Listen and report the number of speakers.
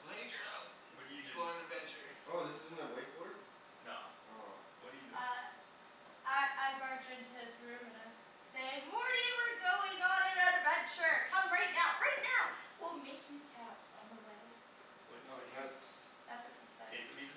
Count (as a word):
four